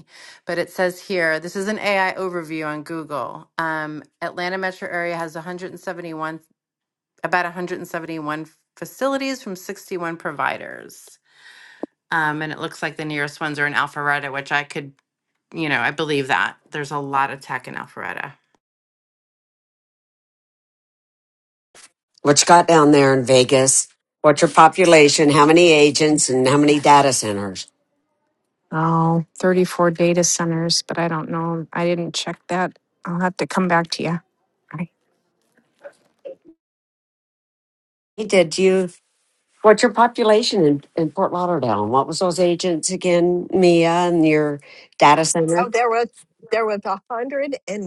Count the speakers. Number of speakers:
4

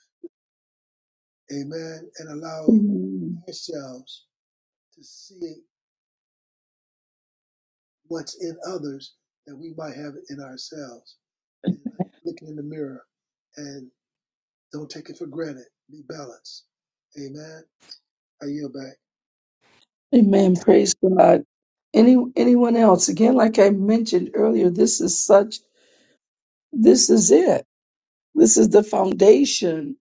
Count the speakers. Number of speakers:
2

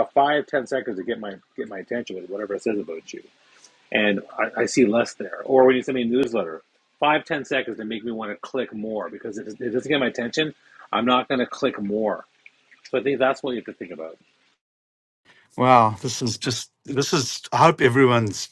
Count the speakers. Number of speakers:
2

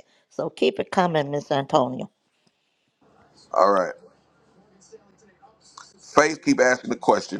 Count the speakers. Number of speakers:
2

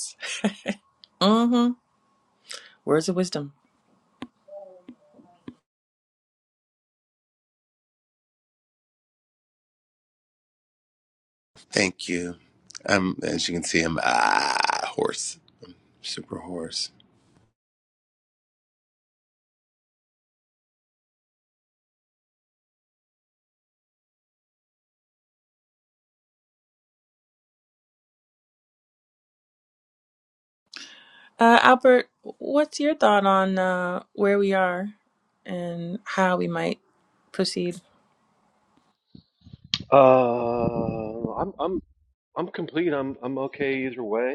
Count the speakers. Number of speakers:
3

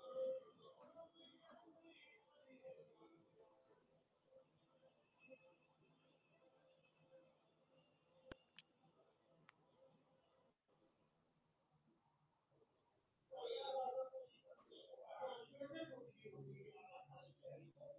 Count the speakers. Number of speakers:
0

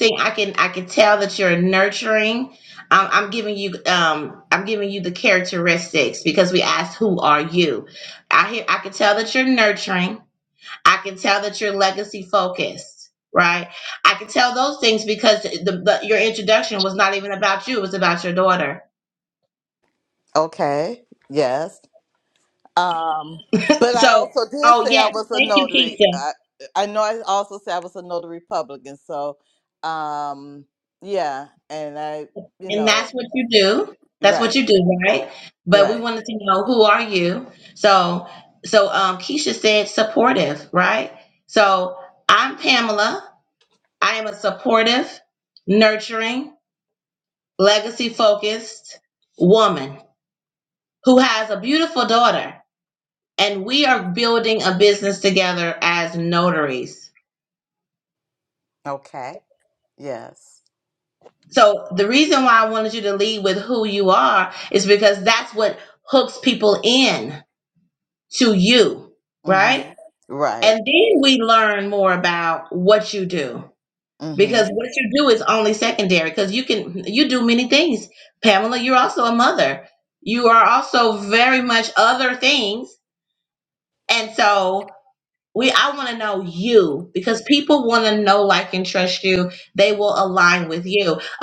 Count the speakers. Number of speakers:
2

